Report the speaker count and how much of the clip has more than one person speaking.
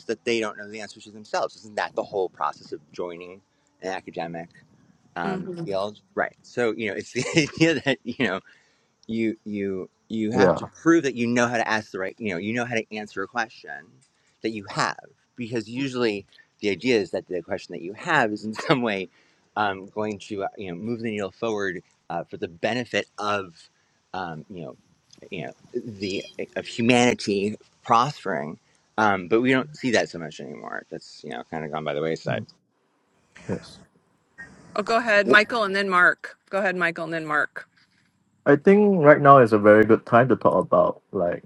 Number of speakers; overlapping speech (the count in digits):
3, about 2%